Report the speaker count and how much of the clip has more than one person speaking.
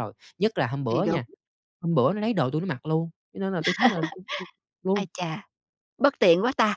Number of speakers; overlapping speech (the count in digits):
2, about 6%